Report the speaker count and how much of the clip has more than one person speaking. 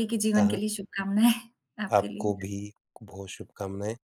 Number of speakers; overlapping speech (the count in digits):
2, about 19%